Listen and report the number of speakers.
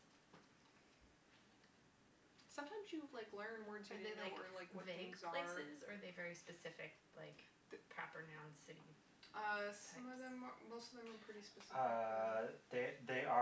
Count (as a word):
three